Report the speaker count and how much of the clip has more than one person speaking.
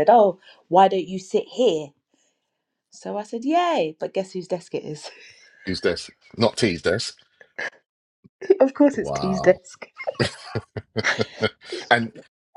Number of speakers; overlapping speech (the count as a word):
two, about 5%